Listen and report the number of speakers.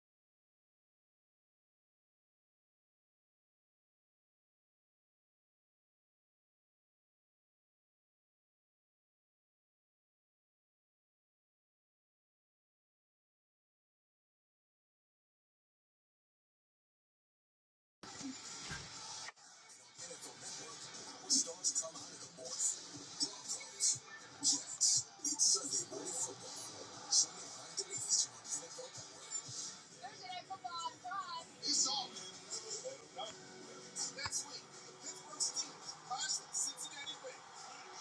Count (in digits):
0